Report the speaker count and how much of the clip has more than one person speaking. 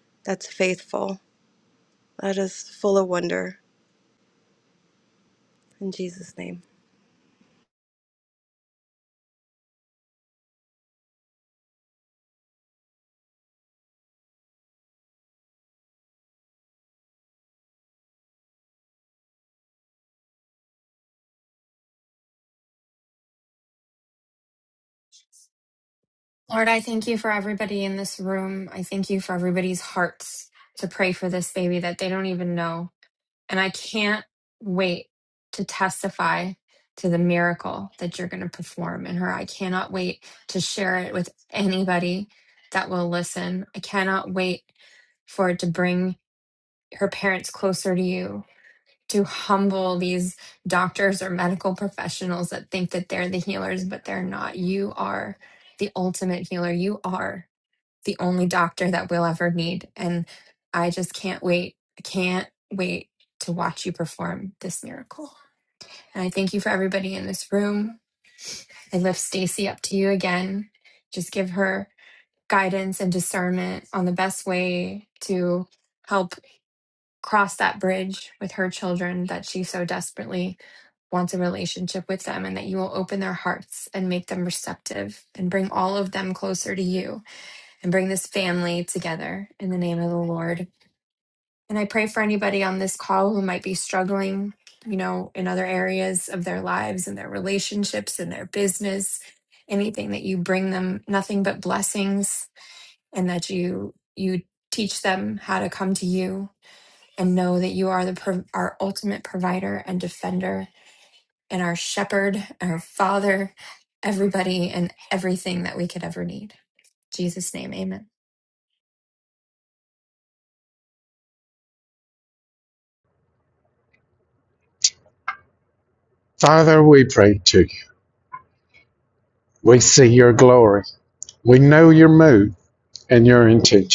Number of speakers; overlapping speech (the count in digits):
3, no overlap